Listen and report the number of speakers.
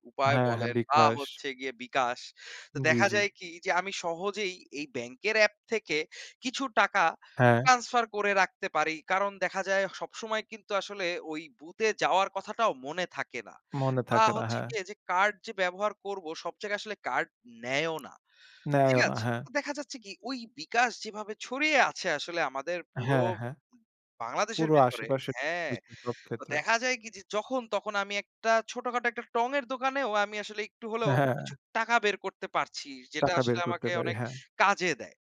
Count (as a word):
two